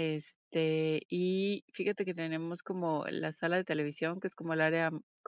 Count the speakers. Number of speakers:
one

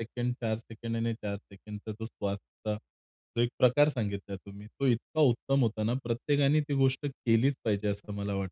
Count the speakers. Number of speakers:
one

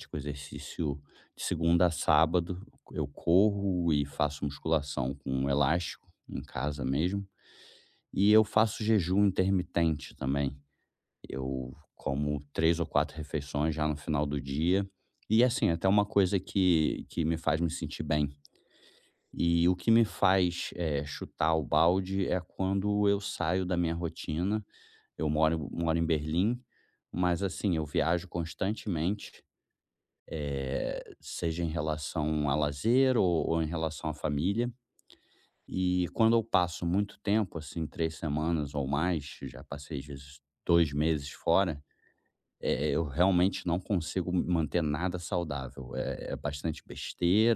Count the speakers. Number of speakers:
one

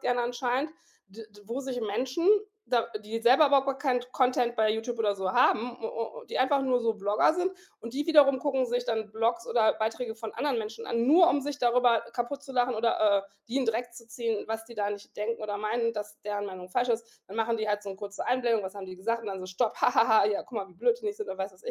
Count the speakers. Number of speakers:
one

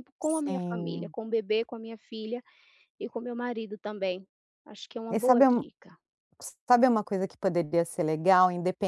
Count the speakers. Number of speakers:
two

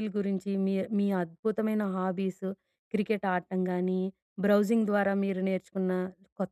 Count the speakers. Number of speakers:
one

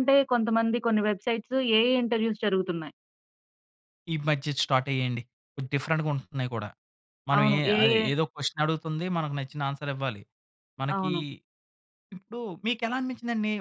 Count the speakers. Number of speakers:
two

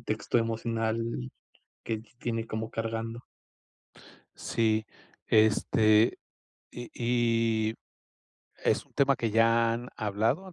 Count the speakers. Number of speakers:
two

